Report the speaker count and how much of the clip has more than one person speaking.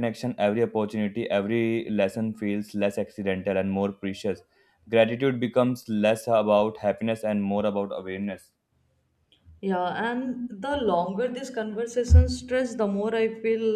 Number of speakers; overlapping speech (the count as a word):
two, no overlap